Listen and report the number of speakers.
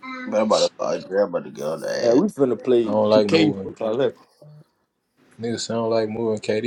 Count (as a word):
three